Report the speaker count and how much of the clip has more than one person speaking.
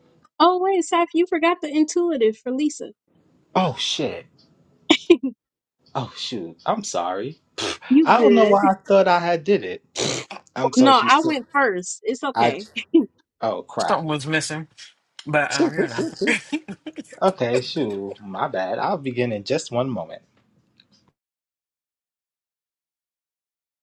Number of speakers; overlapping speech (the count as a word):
three, about 8%